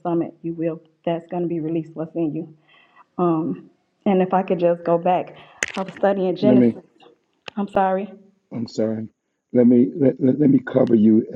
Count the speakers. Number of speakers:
two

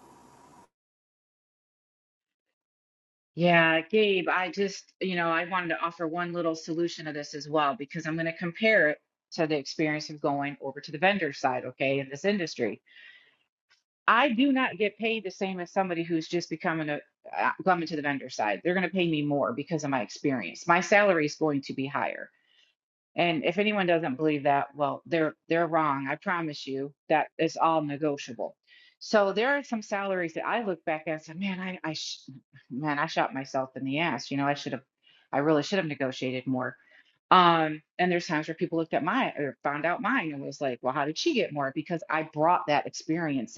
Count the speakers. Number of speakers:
one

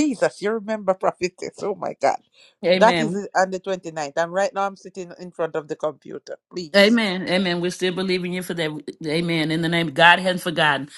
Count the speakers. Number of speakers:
two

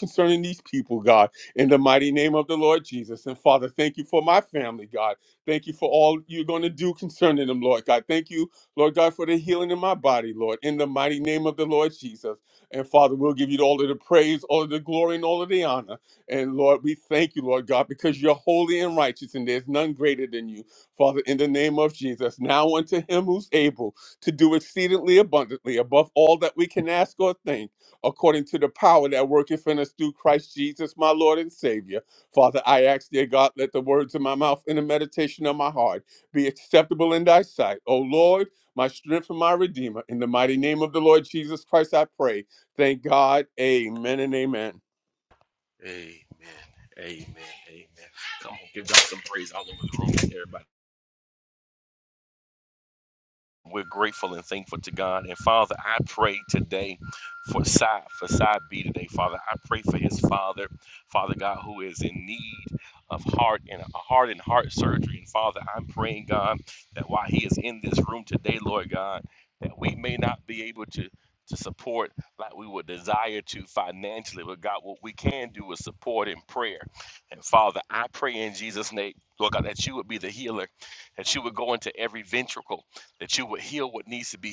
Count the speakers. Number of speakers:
two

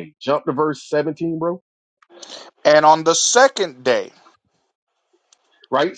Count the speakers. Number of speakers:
two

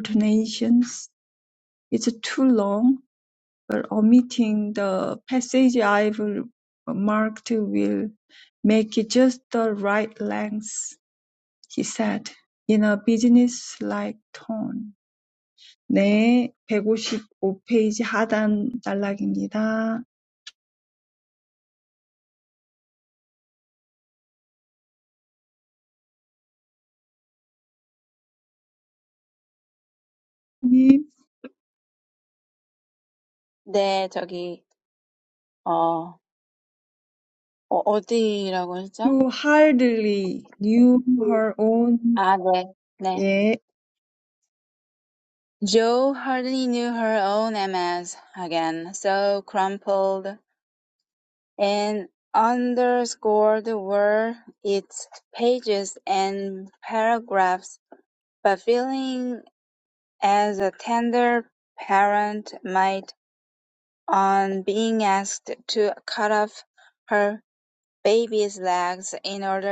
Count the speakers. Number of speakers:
two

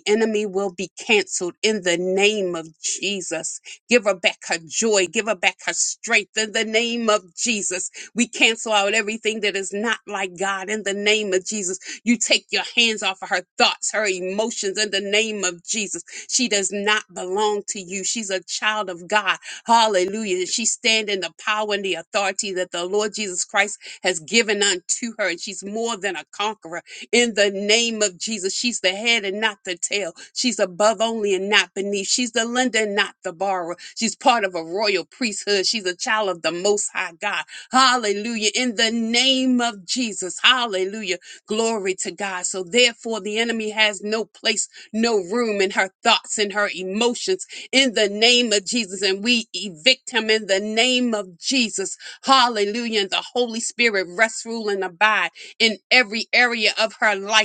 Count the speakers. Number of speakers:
one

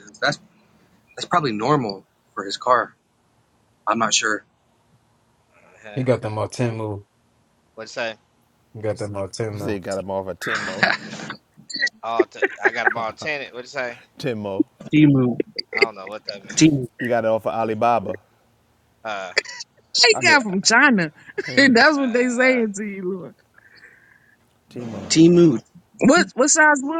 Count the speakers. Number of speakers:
five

